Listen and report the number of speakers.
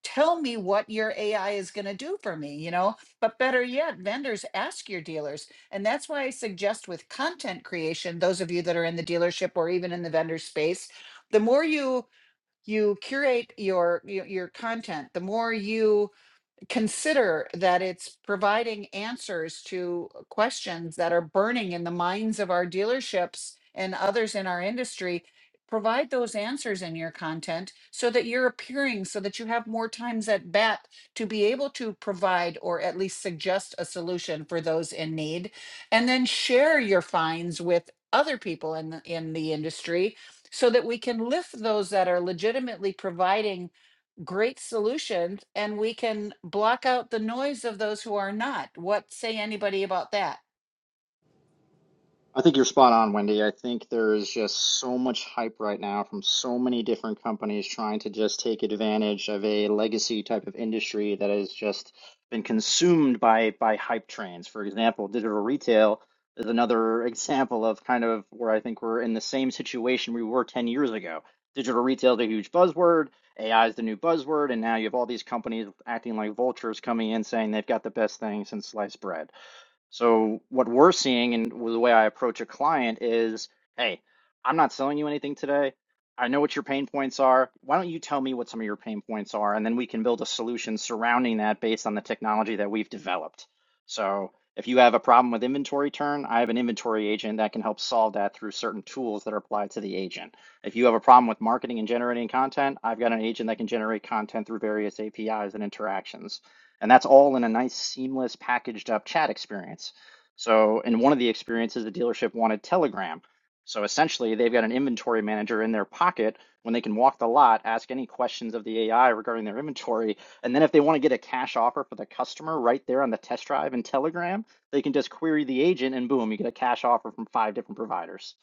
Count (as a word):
two